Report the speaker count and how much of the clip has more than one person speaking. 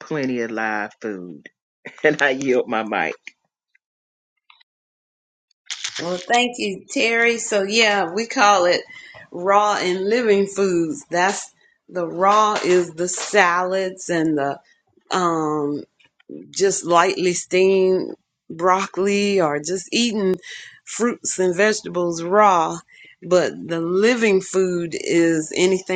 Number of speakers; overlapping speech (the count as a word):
two, no overlap